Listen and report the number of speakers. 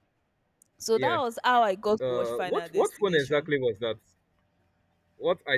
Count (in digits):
2